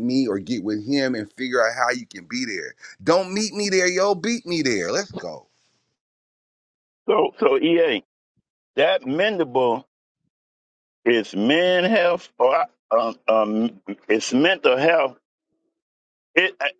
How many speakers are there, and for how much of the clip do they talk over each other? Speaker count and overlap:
two, no overlap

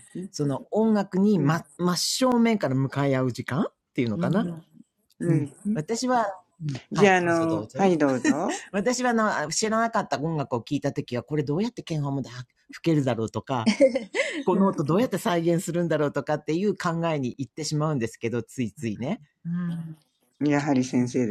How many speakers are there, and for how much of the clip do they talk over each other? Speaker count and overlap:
three, about 10%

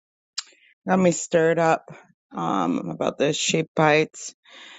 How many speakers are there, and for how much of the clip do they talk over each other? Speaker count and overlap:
one, no overlap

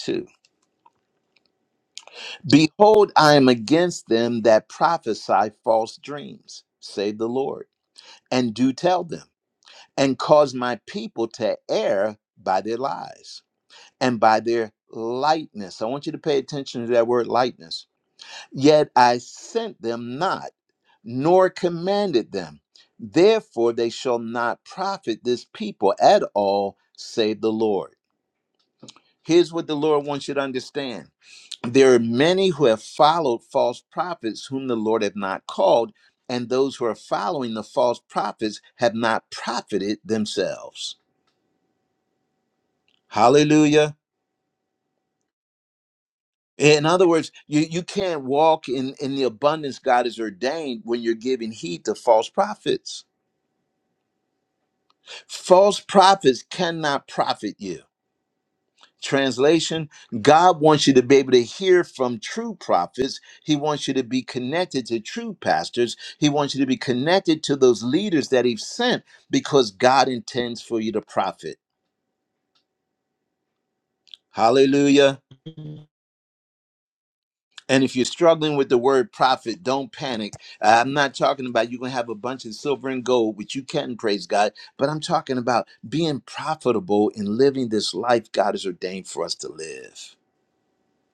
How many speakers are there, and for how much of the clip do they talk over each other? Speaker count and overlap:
one, no overlap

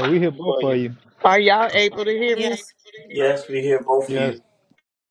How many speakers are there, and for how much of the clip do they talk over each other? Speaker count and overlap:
three, about 12%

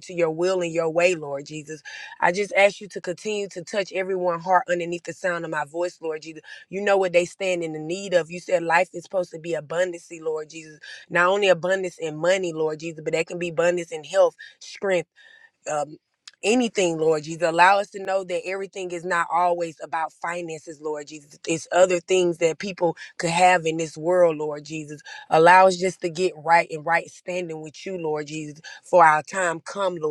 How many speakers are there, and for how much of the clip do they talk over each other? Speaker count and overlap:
one, no overlap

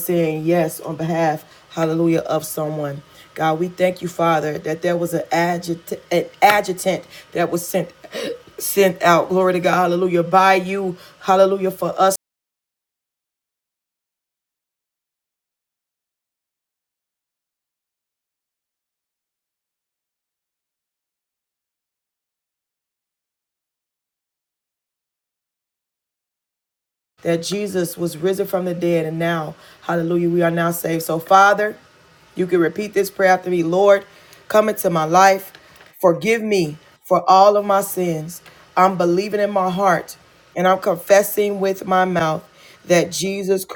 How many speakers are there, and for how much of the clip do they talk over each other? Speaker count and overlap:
one, no overlap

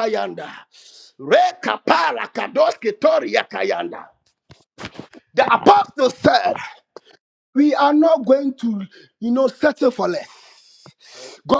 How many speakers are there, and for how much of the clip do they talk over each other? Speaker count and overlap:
one, no overlap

